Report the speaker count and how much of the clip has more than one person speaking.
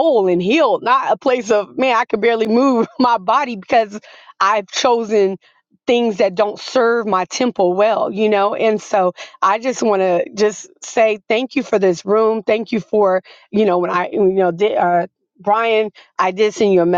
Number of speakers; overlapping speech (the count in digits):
1, no overlap